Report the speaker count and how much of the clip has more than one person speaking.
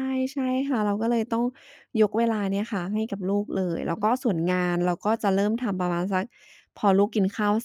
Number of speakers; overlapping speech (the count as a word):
one, no overlap